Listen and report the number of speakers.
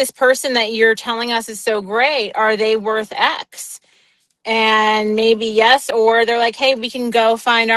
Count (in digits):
1